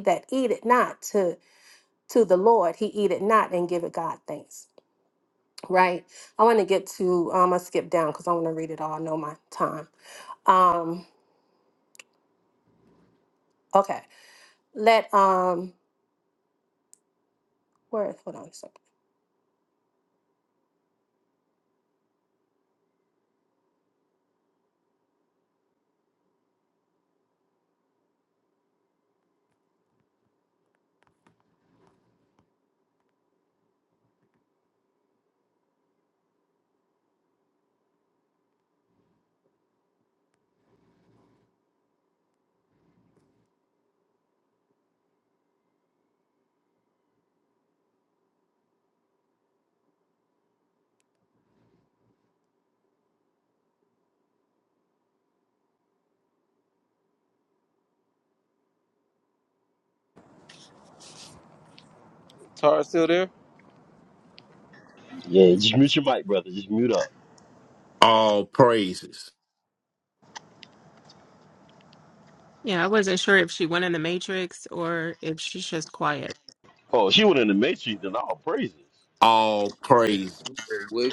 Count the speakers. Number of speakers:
5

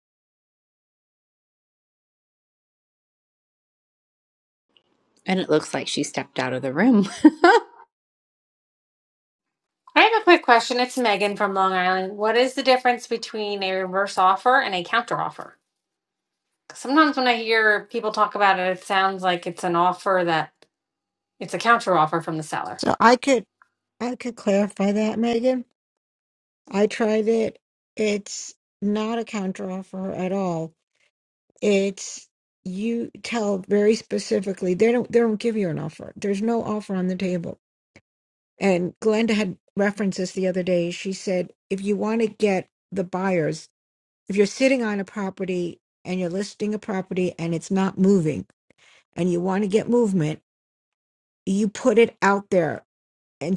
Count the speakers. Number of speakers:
3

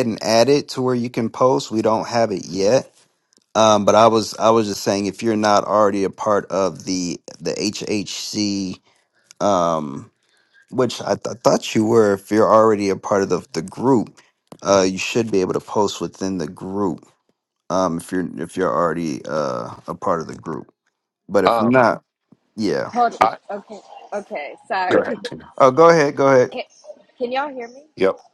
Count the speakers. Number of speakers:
3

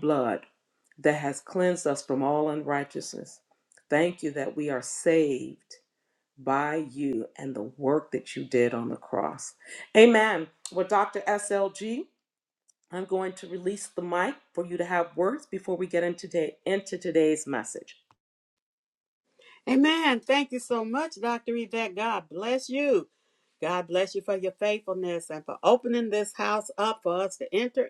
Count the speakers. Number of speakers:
2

